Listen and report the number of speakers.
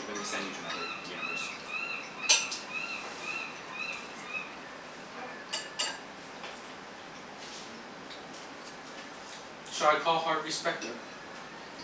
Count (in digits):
2